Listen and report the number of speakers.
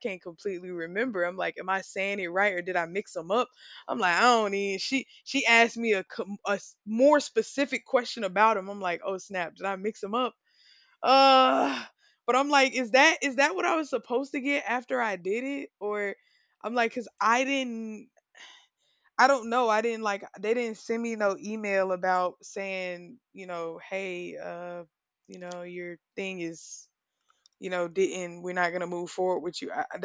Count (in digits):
1